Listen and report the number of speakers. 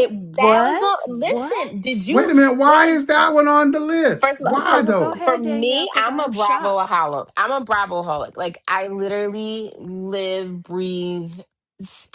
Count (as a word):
three